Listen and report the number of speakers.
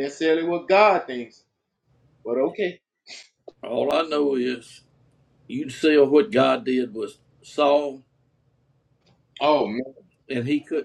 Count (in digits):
2